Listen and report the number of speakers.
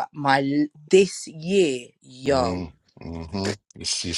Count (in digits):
2